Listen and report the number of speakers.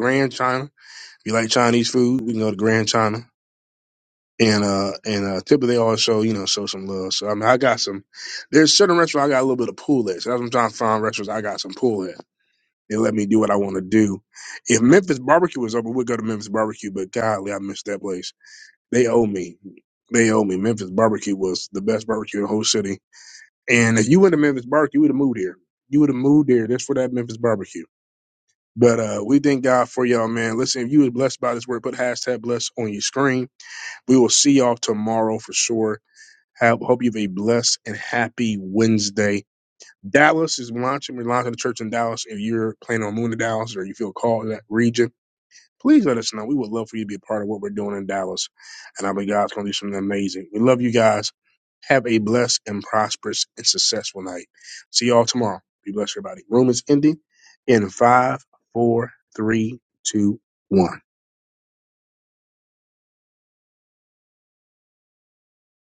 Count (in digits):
1